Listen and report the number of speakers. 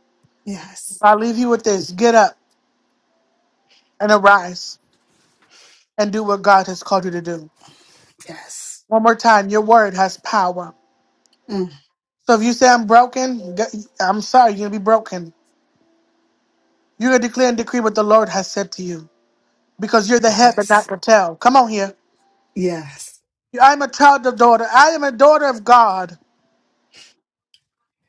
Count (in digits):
2